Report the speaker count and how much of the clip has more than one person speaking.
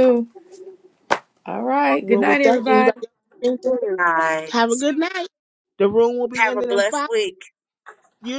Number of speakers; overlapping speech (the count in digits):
3, about 21%